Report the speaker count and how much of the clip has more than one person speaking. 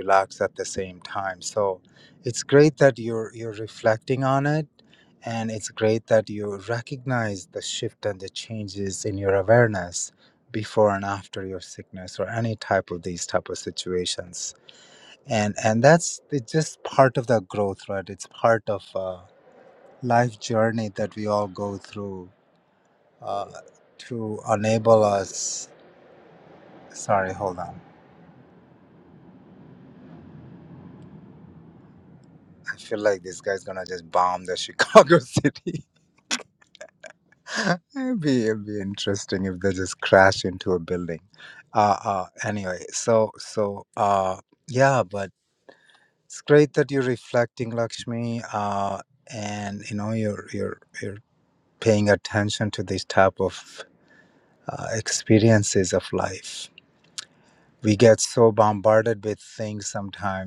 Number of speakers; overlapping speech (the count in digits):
1, no overlap